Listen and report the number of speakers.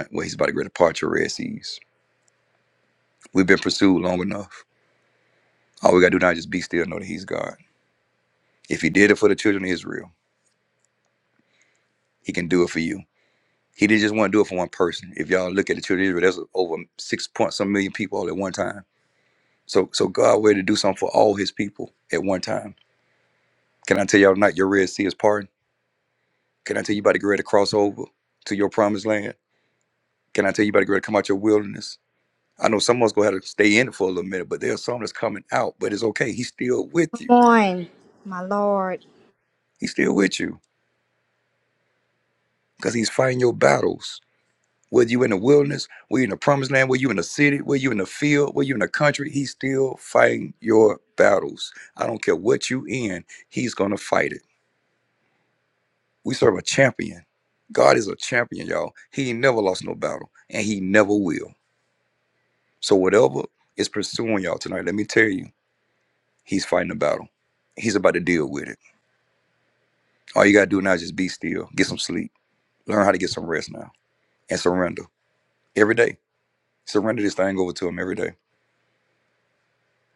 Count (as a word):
two